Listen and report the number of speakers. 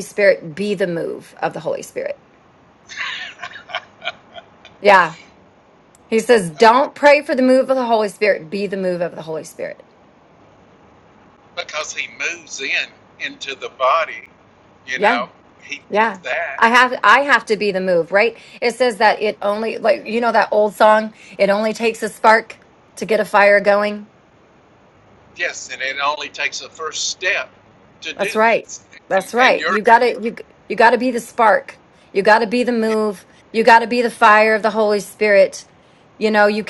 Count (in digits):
2